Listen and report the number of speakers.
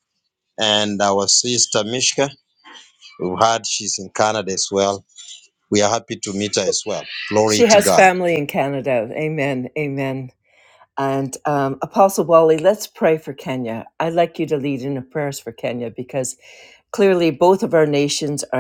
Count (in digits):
2